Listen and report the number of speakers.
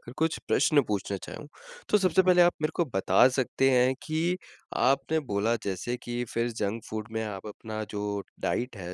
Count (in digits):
1